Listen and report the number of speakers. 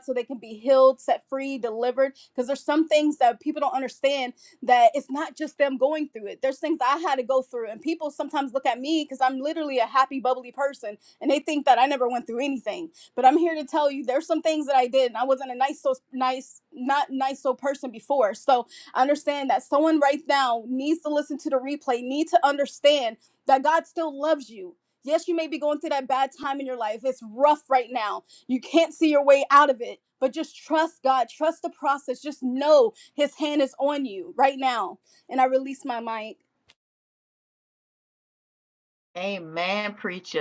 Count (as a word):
two